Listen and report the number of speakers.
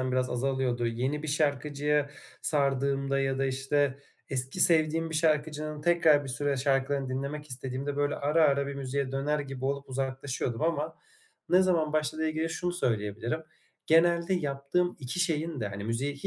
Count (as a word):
one